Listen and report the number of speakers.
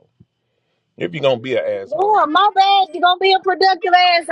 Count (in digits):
2